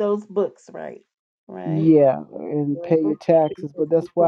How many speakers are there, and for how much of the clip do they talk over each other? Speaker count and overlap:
two, about 43%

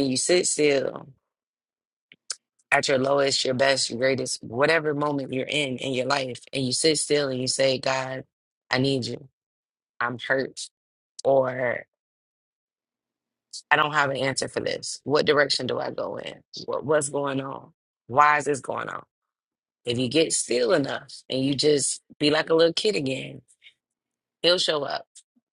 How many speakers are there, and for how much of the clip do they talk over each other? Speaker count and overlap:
one, no overlap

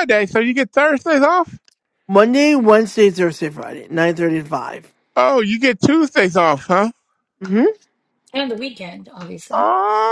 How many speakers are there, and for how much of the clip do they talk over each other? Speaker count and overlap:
three, about 1%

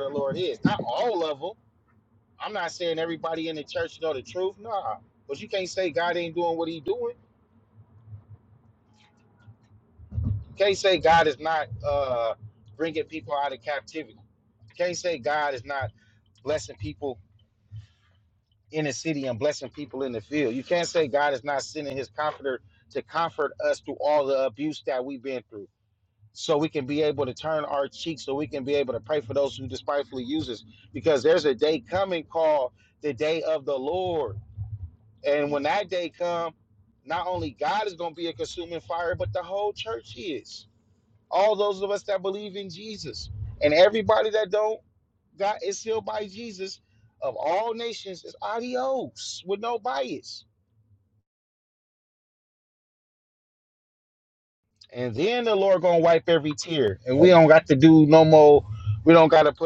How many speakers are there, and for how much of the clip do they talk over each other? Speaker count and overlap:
one, no overlap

